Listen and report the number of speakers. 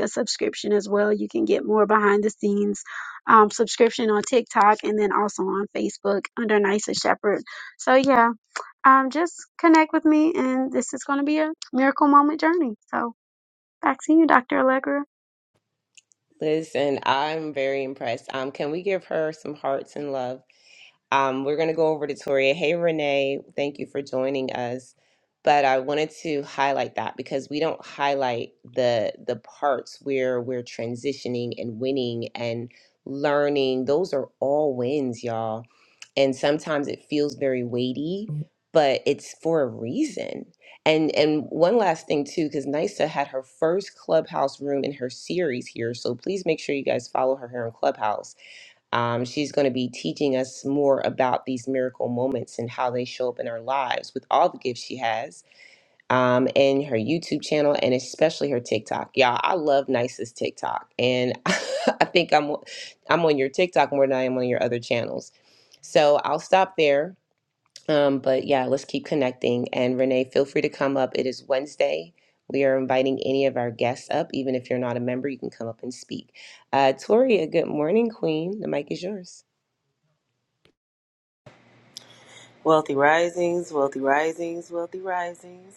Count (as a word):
three